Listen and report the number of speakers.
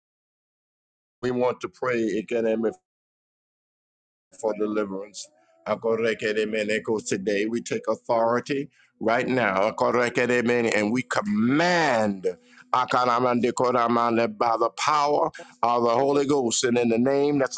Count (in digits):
1